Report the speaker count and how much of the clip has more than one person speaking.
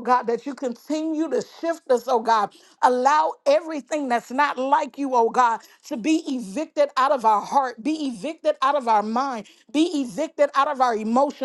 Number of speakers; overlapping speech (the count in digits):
1, no overlap